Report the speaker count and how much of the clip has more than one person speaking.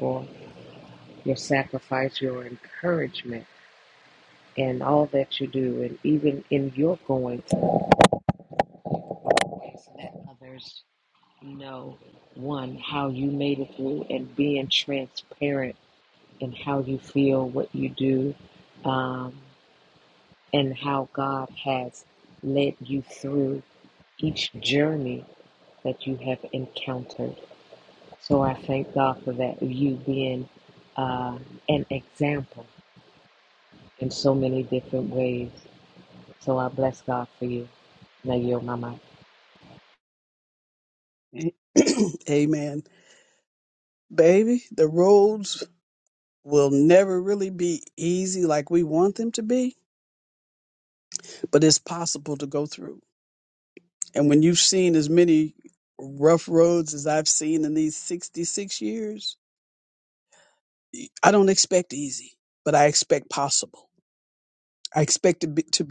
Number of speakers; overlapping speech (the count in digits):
2, no overlap